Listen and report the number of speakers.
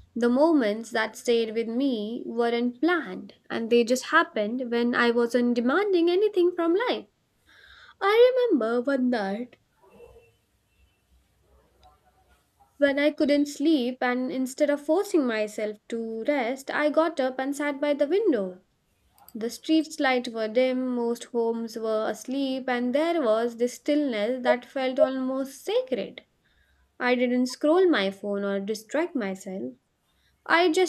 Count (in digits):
1